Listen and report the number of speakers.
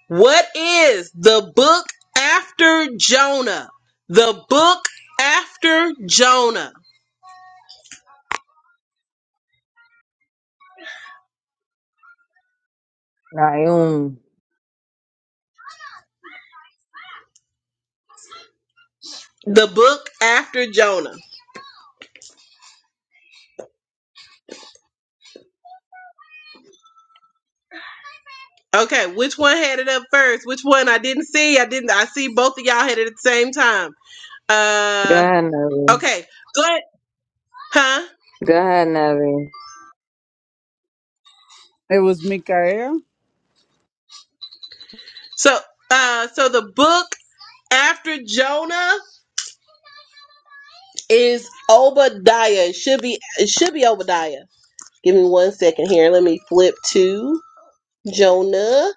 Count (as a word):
three